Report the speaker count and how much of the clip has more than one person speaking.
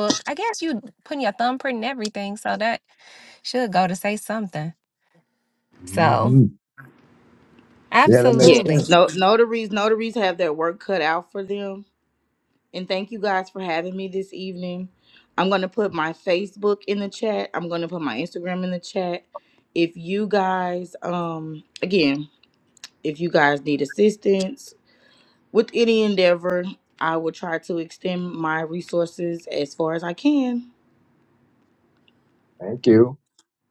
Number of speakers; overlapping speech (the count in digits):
3, about 4%